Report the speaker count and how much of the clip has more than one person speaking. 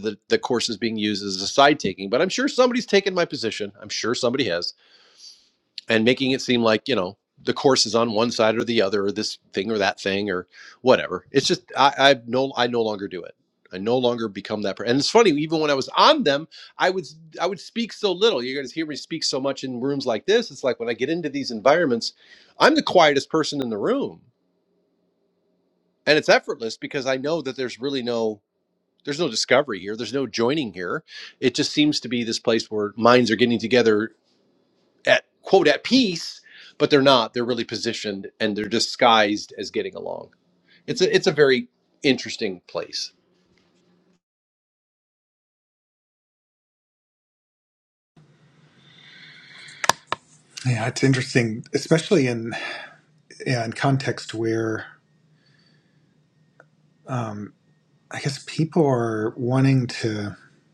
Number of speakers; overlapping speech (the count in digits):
2, no overlap